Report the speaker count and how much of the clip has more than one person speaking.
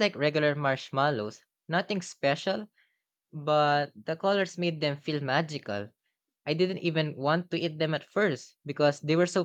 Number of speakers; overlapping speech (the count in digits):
1, no overlap